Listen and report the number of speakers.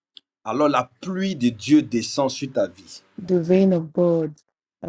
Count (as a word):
two